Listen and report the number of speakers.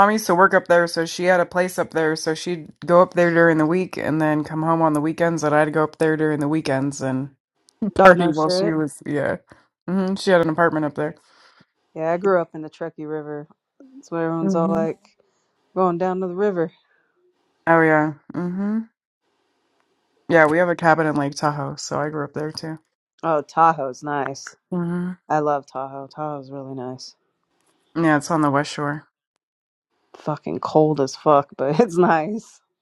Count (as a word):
two